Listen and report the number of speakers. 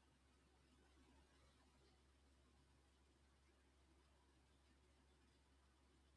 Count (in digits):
0